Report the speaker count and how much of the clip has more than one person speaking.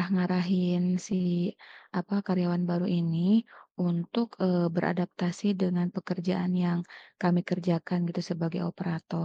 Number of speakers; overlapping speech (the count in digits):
1, no overlap